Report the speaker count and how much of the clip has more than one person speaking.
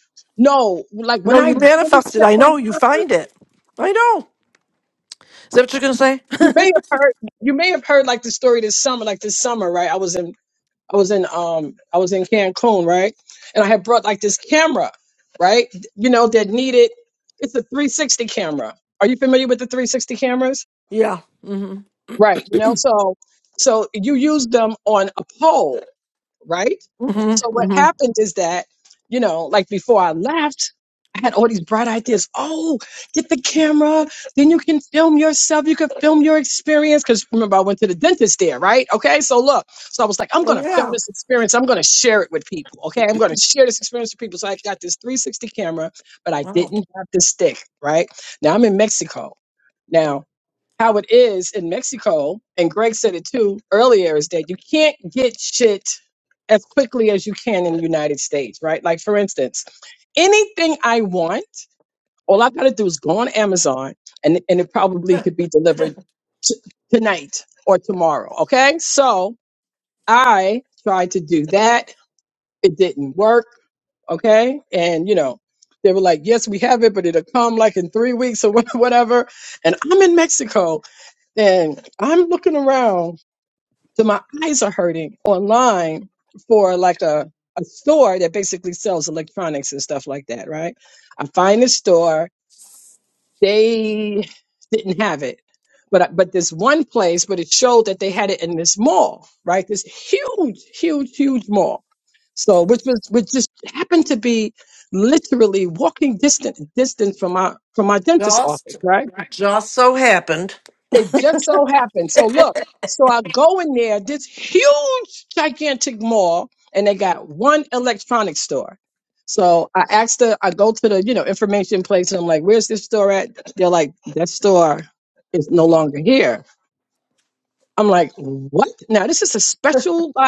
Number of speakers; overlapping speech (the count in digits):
2, about 3%